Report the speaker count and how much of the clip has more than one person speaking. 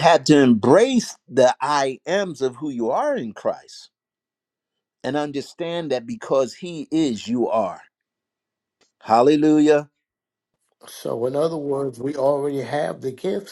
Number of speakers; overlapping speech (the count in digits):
2, no overlap